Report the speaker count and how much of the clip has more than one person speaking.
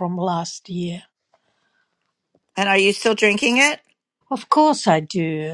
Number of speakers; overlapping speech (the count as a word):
two, no overlap